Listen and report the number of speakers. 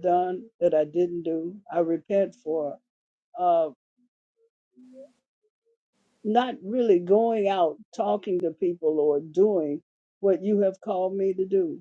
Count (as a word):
one